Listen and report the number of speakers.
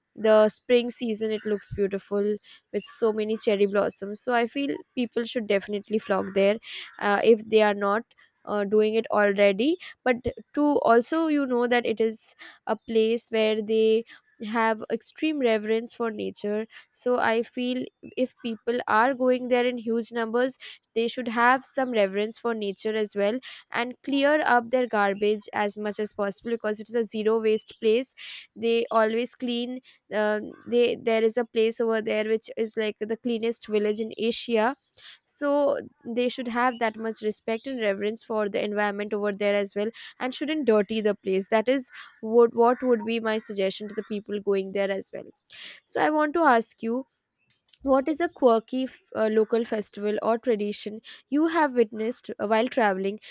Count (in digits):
1